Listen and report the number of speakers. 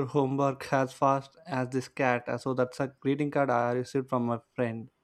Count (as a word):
one